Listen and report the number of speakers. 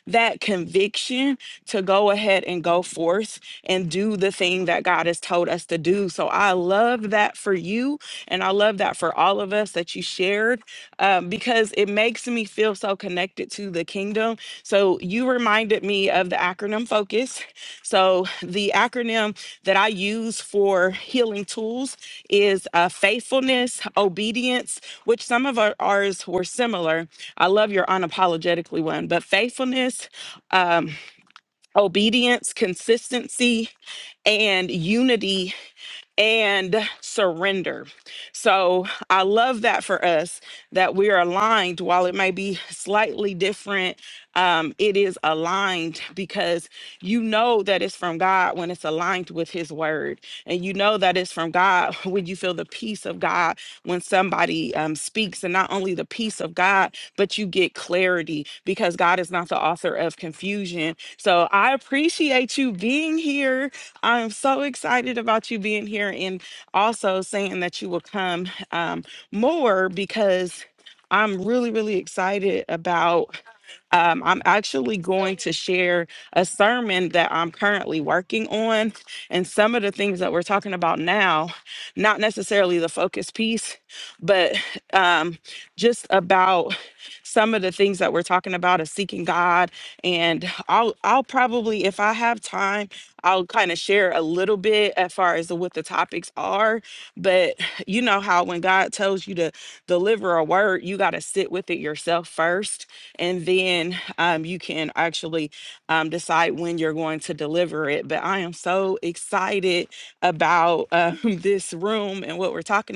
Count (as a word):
one